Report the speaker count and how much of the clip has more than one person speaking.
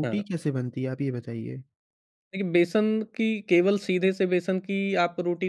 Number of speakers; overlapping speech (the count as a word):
two, about 4%